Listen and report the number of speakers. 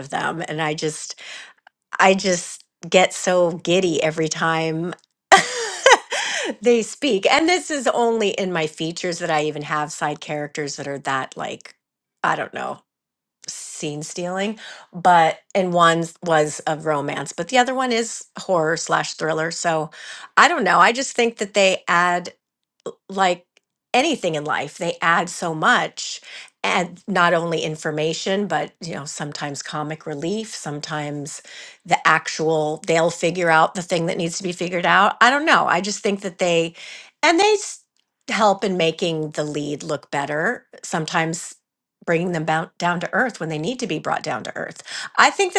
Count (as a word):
one